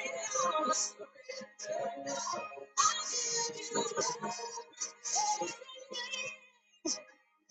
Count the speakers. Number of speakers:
0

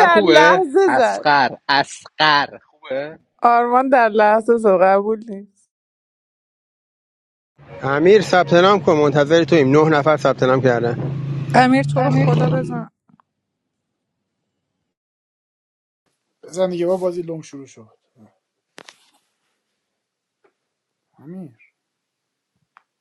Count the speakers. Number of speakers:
5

